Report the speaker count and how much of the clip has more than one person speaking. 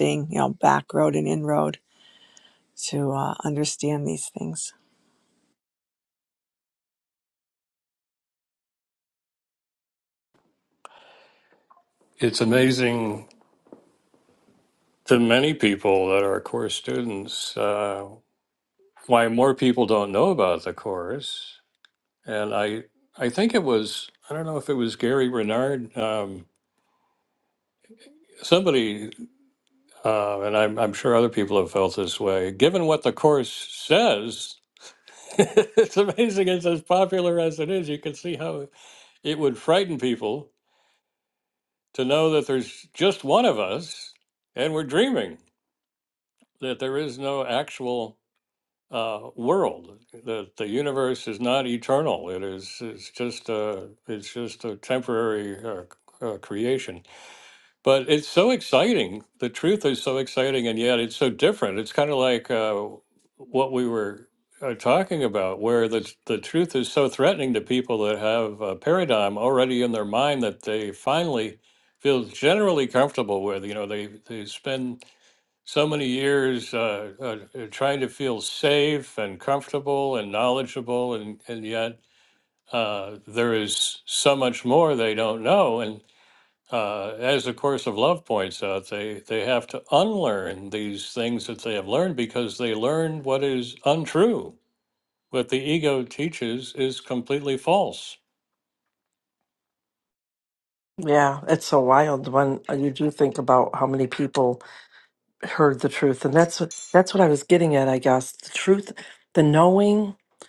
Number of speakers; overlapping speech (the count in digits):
3, no overlap